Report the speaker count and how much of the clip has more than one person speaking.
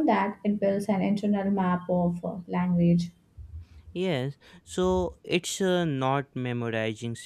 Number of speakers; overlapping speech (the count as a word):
two, no overlap